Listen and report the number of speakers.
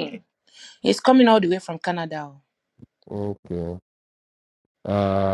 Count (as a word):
two